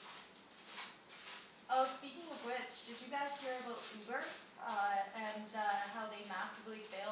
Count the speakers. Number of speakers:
1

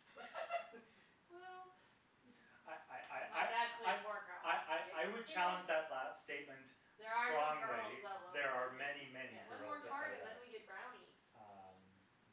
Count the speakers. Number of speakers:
3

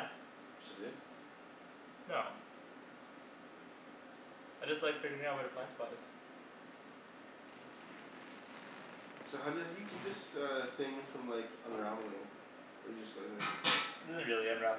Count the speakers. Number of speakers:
2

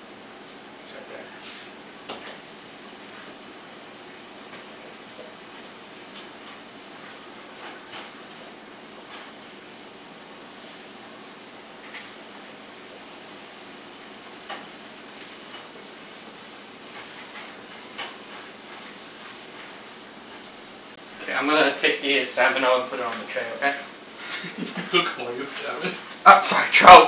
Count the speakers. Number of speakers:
2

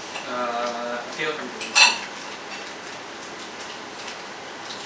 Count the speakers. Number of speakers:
1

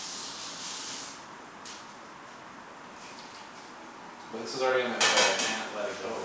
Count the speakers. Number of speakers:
1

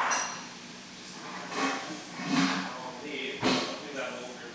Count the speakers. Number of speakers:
2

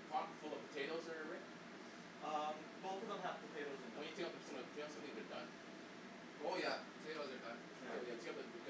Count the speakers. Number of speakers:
3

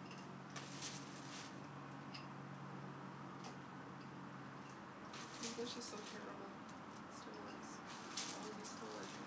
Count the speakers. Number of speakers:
1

